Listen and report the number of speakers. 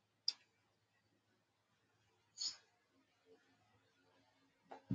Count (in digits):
0